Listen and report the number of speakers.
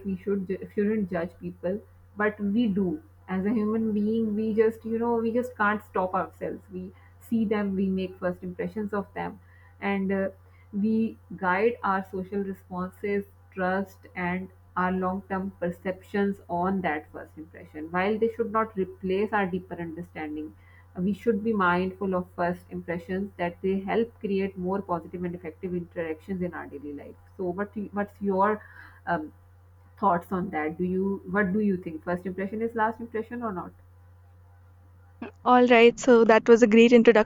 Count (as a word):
two